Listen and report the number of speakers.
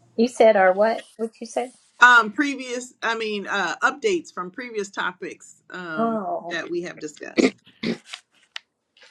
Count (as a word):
two